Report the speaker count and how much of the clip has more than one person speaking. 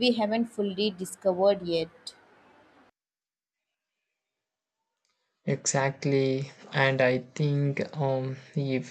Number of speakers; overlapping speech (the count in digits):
2, no overlap